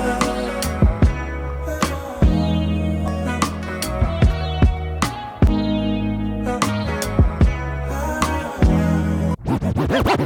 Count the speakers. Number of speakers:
0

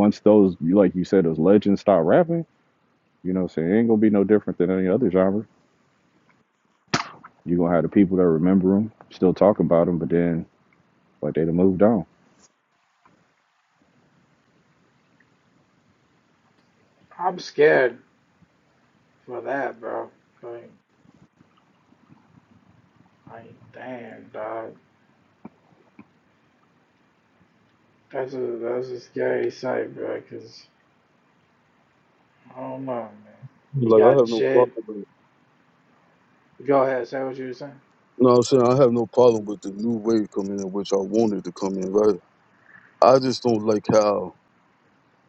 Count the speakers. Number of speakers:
3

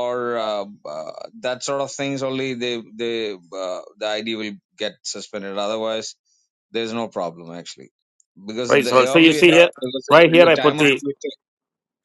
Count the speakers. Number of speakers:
2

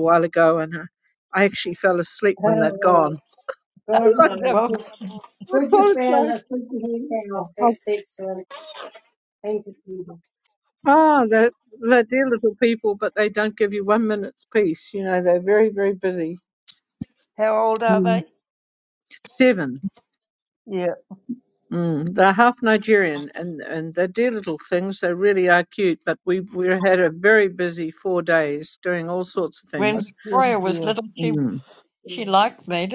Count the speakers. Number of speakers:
4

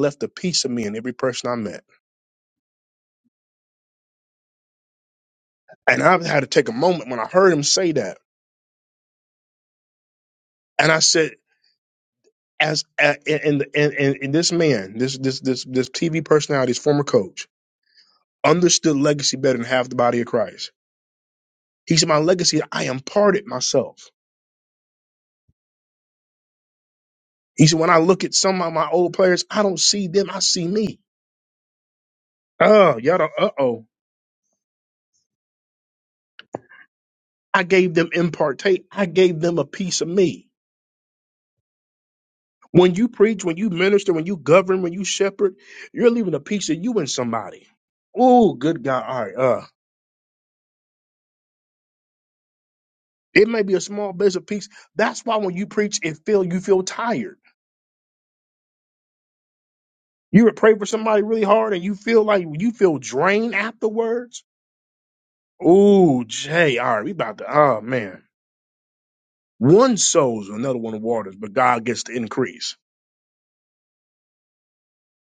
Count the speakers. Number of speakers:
1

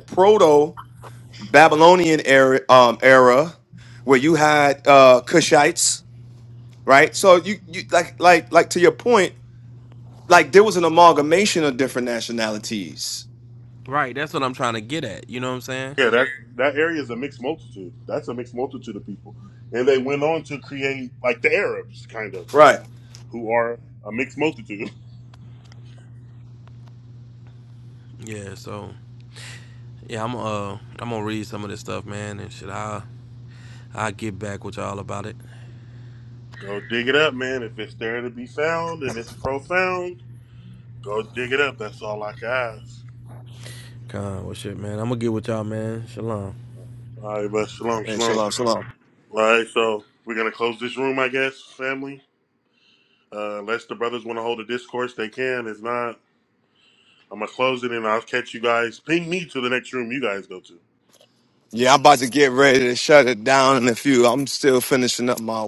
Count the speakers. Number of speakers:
3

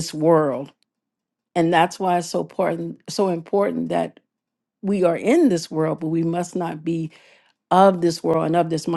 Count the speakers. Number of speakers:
1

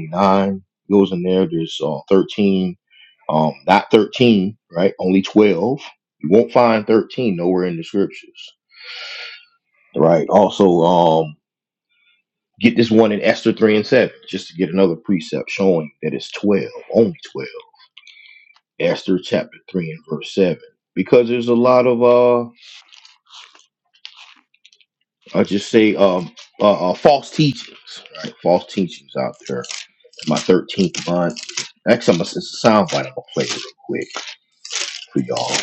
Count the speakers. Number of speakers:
1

